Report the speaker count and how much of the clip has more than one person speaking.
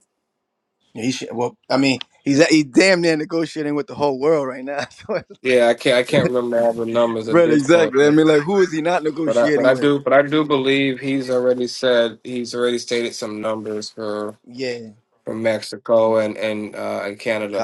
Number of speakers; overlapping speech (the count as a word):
two, about 9%